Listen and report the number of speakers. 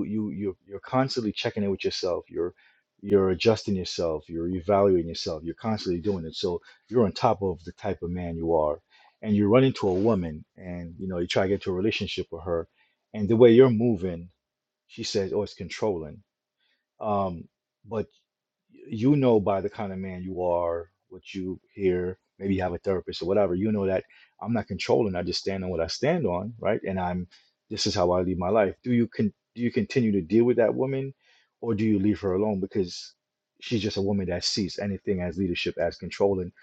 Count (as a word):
one